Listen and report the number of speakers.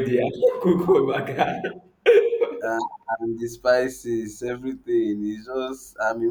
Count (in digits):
2